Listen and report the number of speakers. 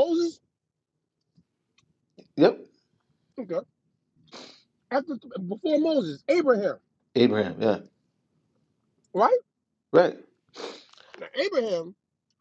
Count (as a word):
two